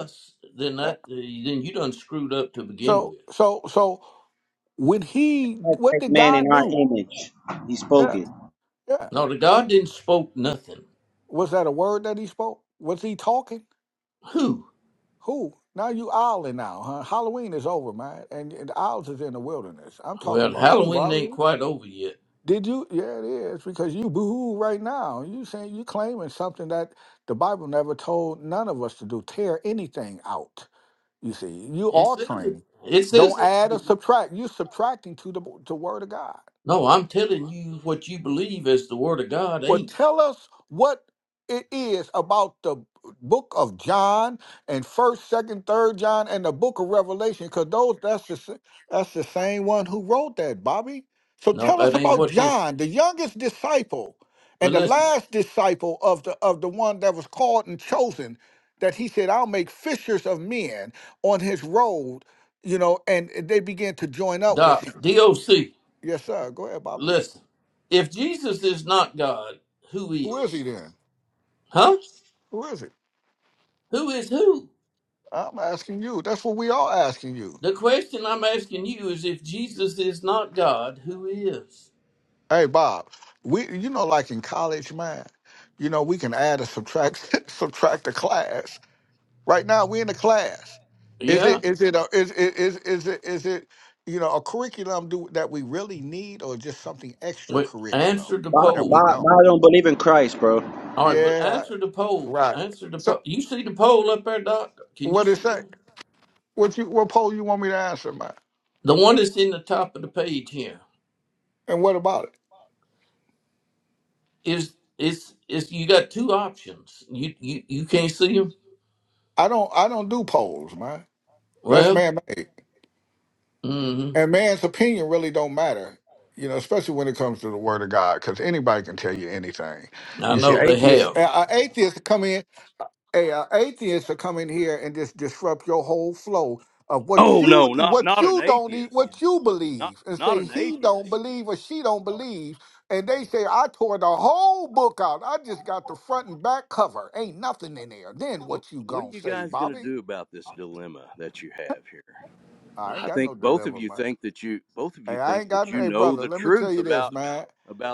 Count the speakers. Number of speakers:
4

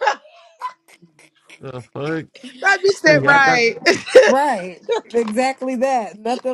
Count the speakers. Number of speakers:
3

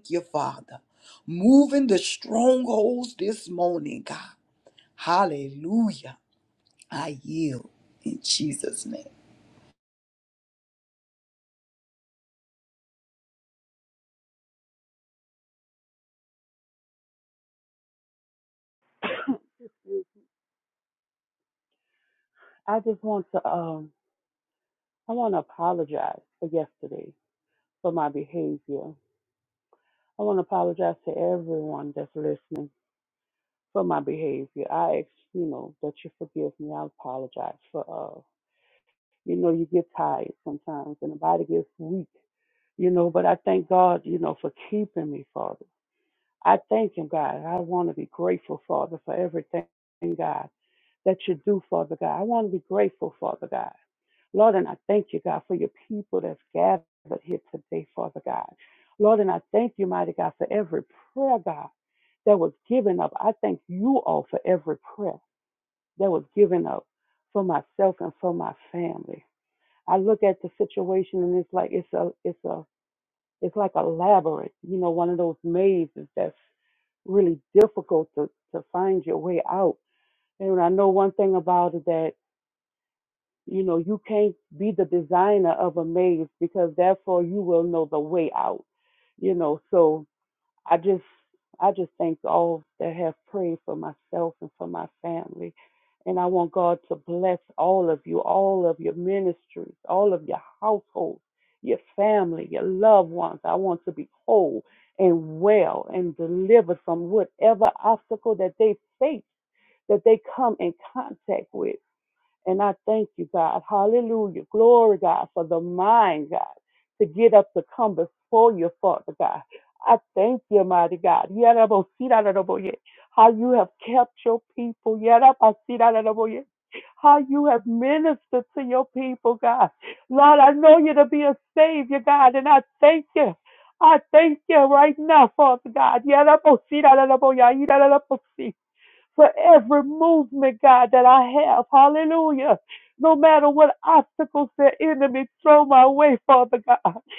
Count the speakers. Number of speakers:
2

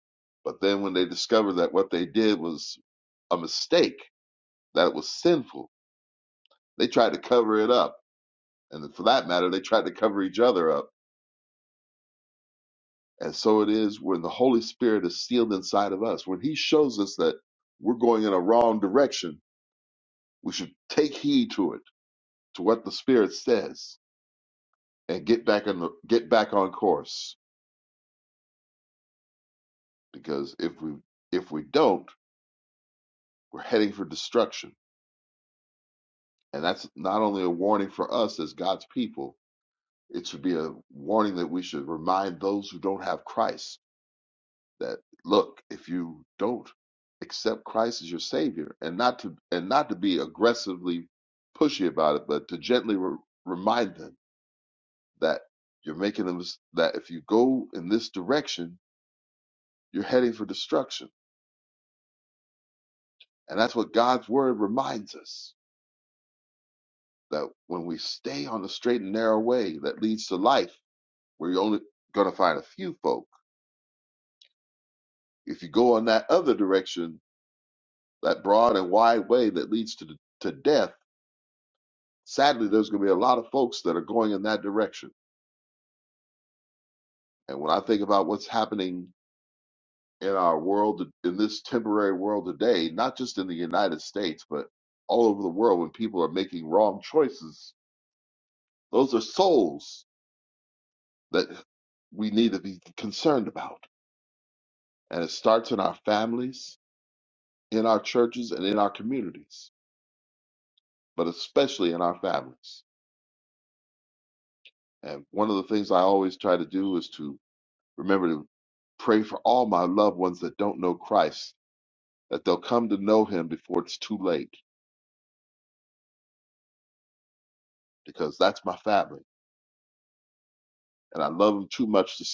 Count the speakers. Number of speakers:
1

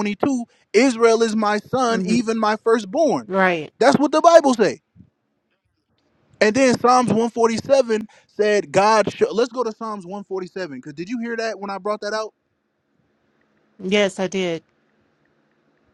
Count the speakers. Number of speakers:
2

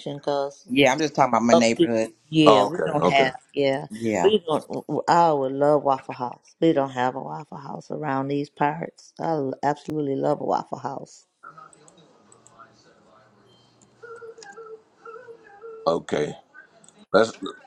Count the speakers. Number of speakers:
3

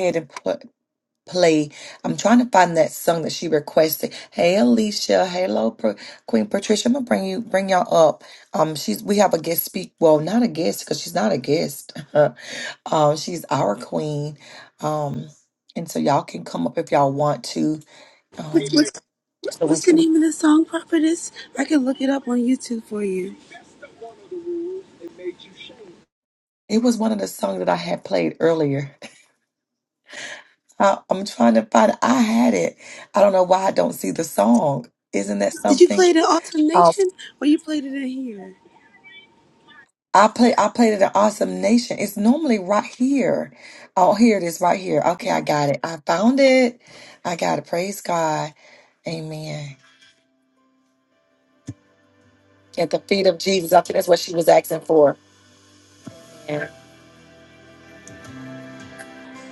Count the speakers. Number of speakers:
2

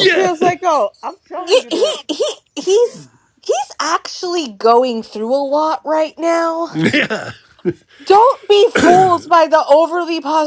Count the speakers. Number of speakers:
3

